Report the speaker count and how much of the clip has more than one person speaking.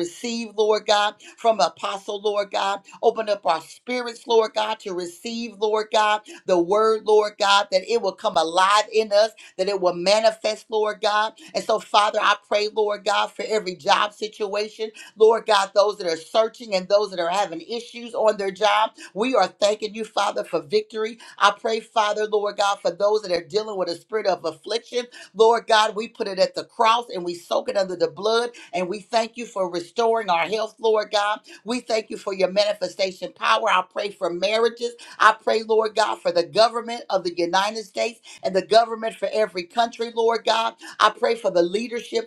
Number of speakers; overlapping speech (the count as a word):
one, no overlap